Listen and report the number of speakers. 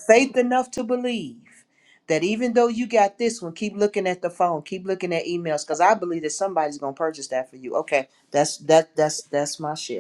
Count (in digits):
1